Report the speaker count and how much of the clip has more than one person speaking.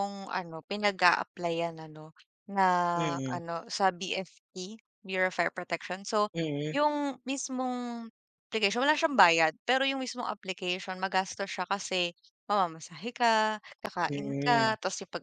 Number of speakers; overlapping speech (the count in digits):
2, about 5%